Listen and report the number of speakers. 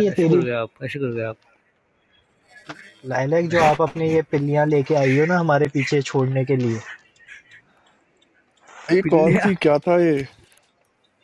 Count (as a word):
three